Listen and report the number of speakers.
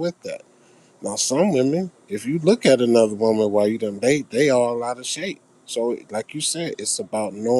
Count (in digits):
1